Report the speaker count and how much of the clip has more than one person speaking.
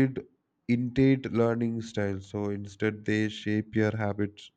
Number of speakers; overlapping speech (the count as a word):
one, no overlap